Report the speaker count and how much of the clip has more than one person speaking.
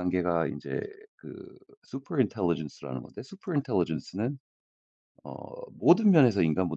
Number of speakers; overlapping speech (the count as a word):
one, no overlap